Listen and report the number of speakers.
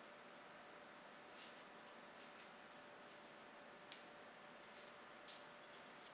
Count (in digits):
0